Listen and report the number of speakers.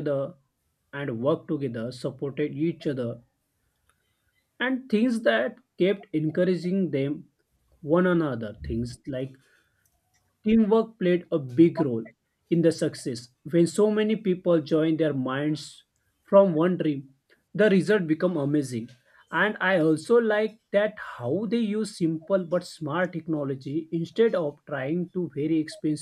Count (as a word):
one